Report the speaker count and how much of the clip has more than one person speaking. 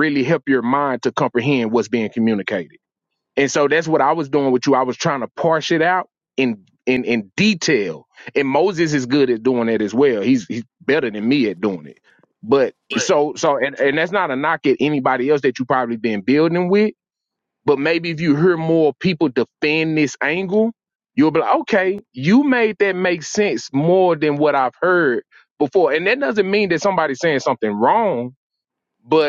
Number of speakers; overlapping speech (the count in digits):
1, no overlap